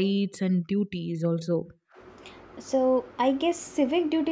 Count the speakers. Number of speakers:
2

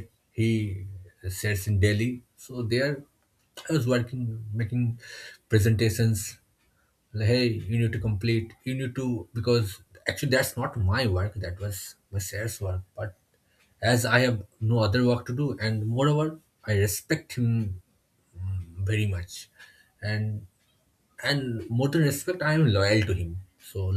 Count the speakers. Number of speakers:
1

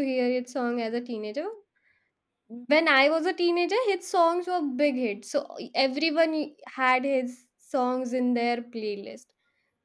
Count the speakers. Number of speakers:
1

